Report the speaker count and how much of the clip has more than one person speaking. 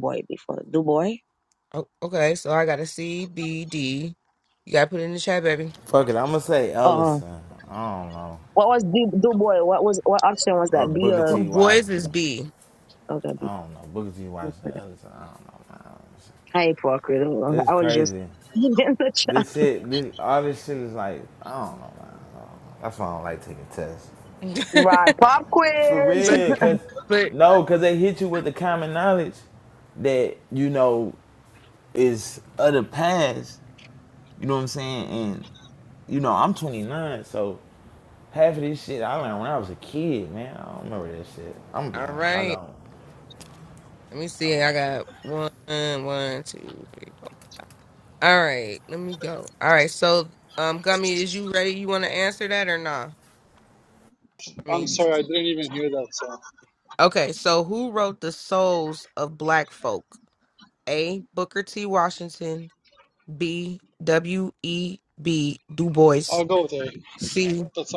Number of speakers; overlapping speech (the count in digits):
4, about 6%